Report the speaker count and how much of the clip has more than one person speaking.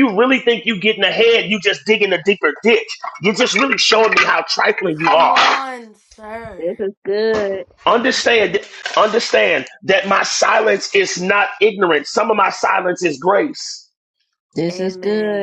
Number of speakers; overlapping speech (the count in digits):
3, about 9%